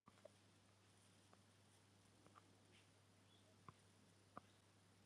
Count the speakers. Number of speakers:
0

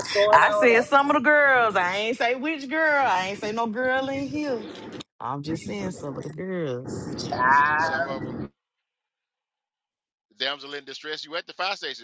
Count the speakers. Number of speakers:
3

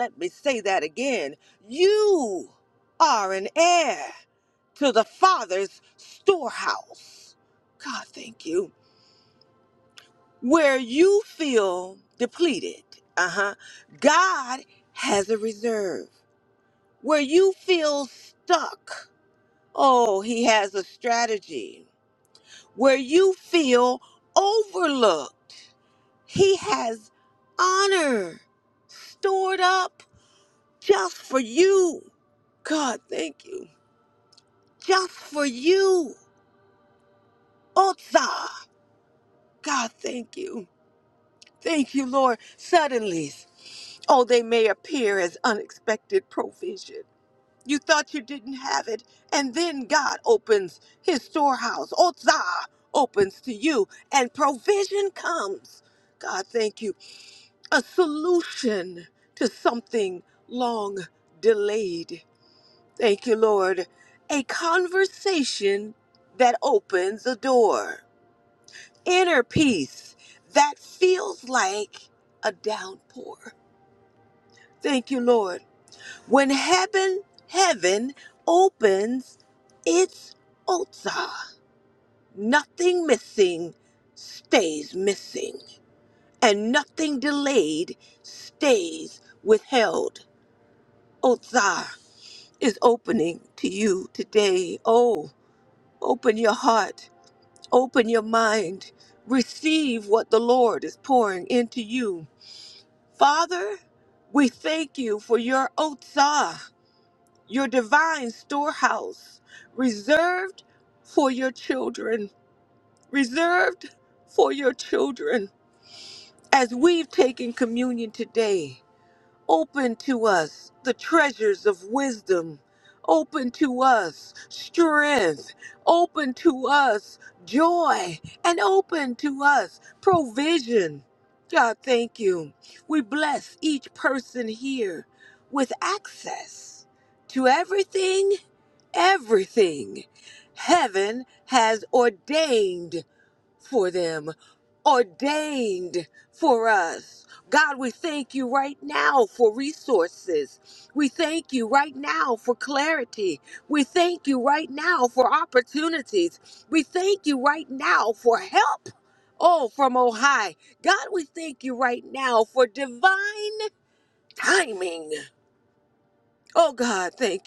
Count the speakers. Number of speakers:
1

